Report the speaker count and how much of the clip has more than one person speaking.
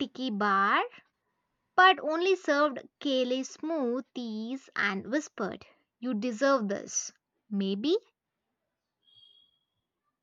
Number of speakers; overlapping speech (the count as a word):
one, no overlap